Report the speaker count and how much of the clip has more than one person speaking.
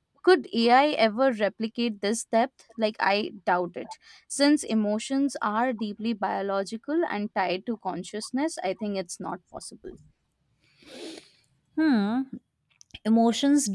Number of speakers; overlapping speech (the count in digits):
2, no overlap